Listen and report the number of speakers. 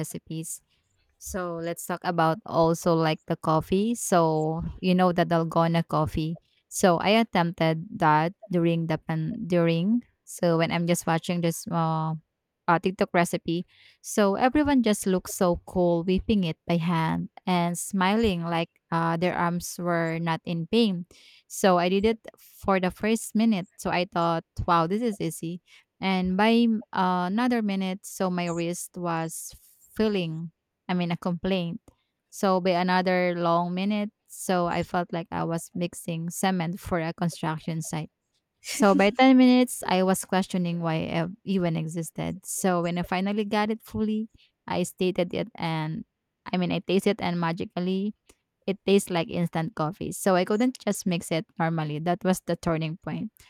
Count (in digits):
1